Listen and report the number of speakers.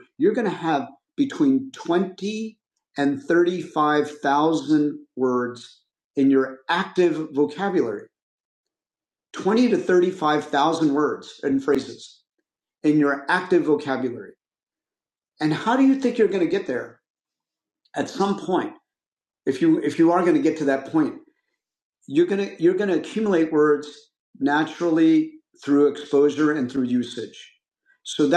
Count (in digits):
1